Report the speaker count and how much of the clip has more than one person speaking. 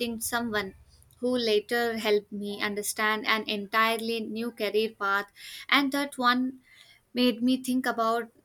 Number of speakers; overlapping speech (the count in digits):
1, no overlap